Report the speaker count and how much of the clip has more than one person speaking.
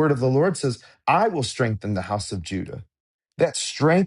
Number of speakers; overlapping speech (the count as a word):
one, no overlap